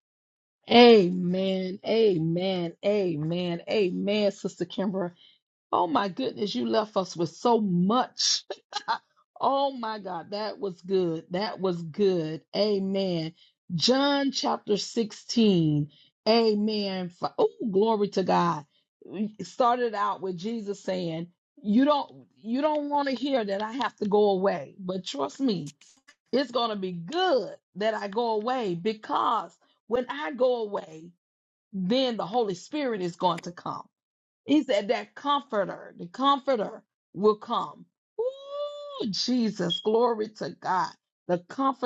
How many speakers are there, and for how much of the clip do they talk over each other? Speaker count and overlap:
one, no overlap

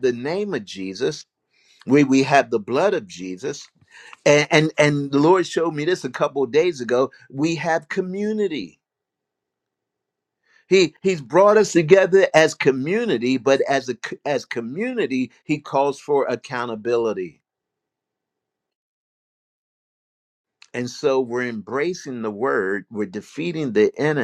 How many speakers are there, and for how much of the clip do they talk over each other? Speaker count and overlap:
one, no overlap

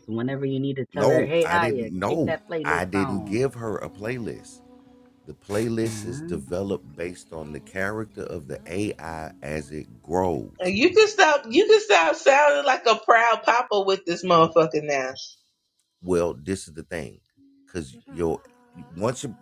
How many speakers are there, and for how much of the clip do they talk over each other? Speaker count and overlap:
three, about 16%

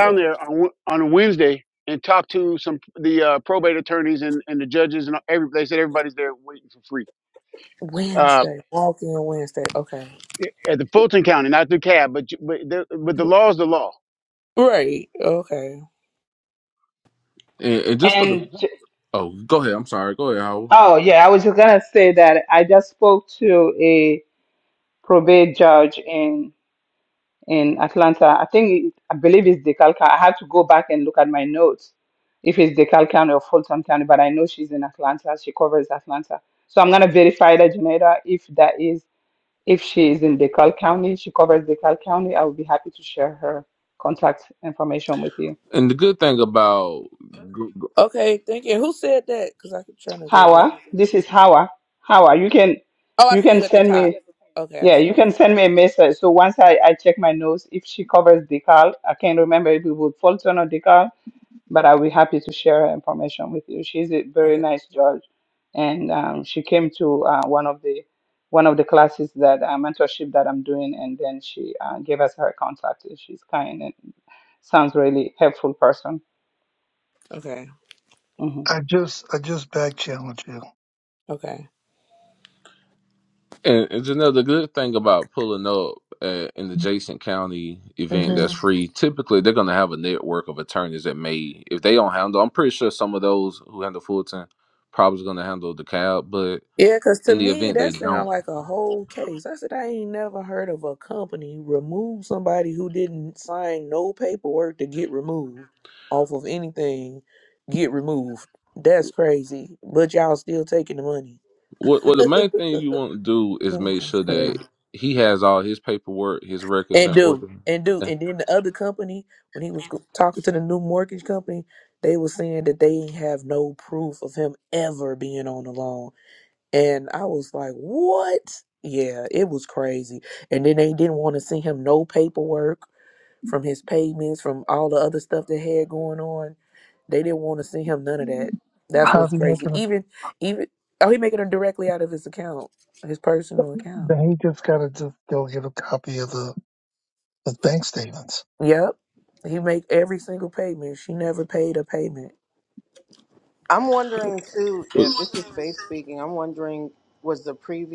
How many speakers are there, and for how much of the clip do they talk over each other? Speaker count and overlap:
six, about 4%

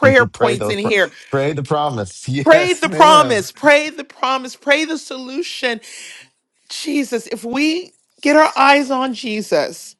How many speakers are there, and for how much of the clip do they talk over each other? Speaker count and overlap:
two, about 16%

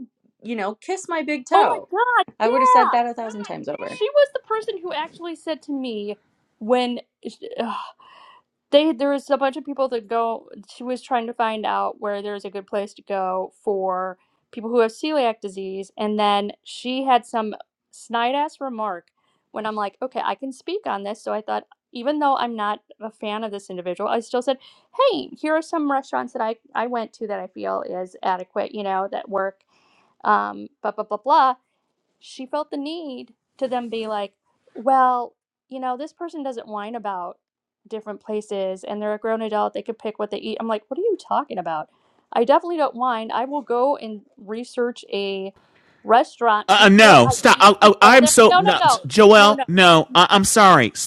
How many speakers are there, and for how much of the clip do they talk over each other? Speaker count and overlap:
three, about 7%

